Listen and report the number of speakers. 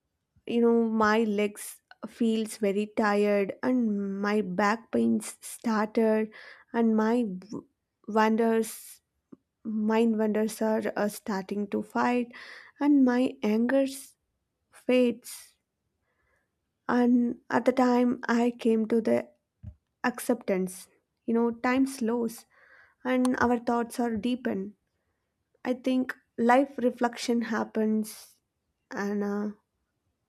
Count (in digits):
1